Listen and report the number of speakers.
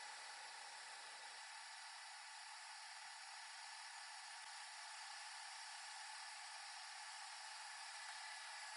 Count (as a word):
zero